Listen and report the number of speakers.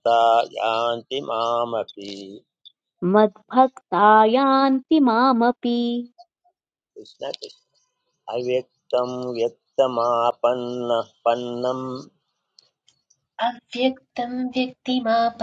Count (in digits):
3